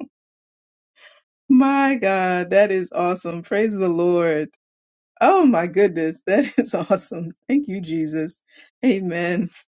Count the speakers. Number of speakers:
1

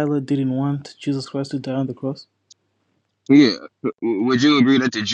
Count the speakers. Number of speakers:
2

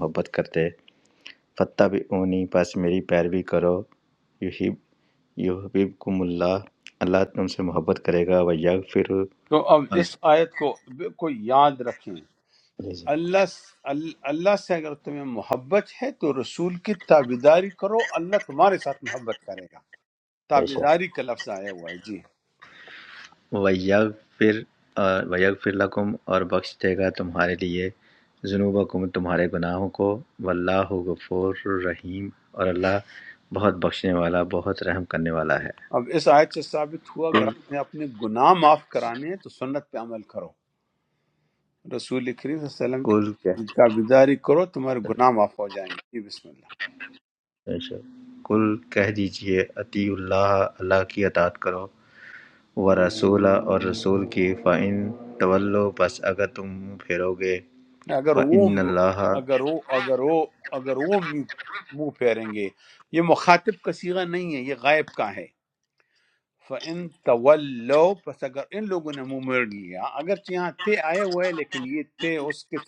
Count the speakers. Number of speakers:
2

